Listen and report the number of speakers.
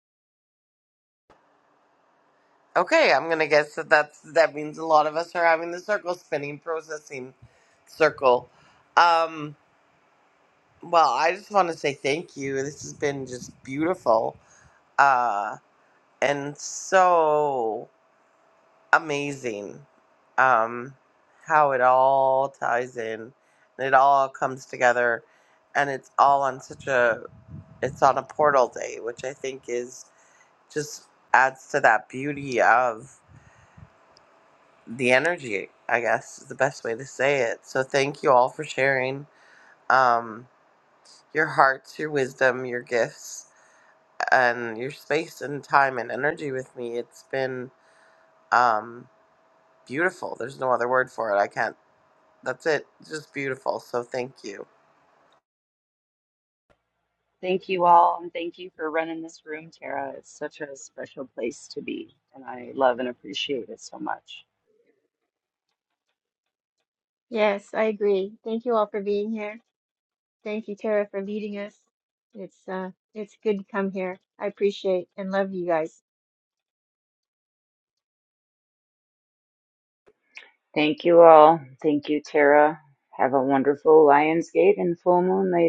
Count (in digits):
4